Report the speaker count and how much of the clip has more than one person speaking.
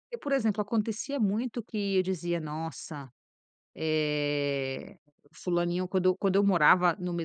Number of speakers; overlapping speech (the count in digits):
1, no overlap